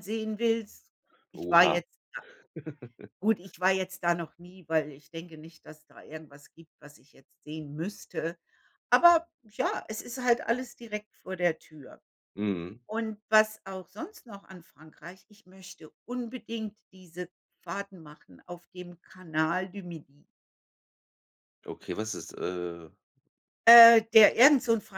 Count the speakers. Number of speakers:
2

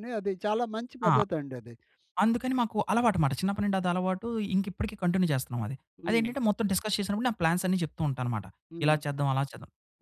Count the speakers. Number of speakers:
2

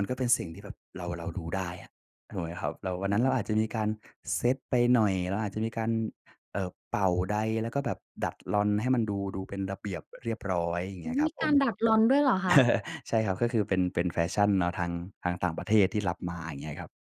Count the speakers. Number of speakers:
2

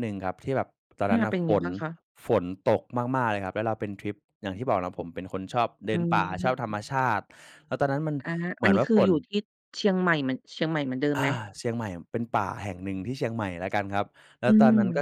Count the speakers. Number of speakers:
2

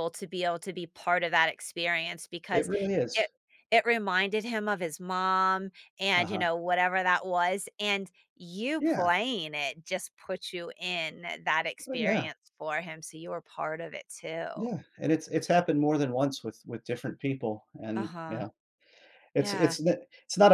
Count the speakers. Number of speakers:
2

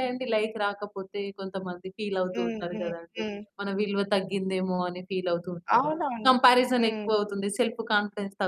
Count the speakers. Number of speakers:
2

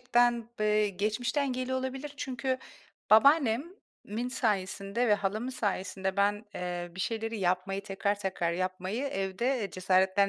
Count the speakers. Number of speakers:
1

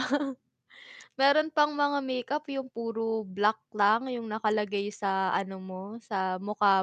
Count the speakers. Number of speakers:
1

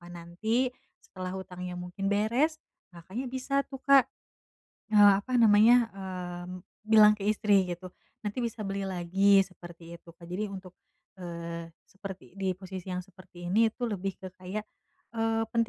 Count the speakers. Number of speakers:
1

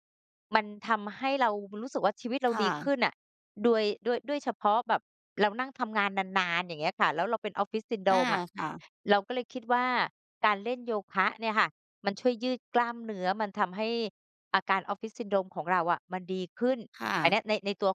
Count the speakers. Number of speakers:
2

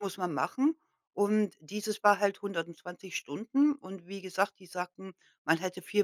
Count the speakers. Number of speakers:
1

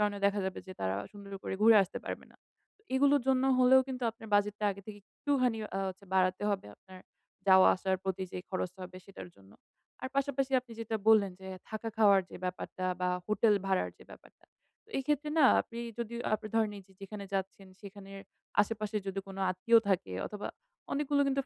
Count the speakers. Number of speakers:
1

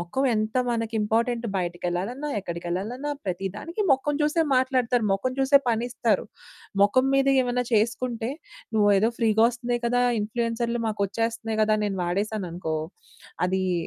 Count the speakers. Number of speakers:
1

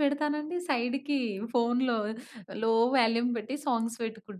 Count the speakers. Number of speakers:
1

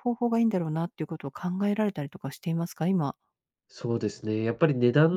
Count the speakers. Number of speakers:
2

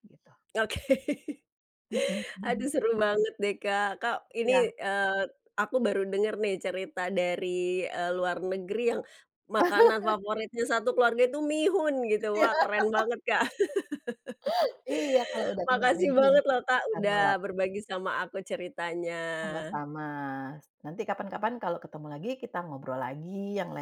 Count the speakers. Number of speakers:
2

